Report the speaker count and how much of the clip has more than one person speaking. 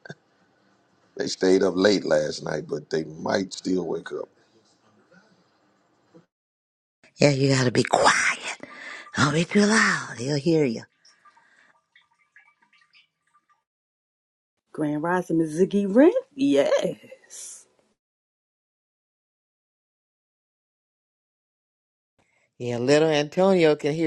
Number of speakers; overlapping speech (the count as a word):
four, no overlap